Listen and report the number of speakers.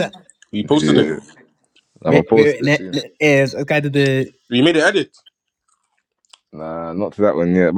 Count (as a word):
three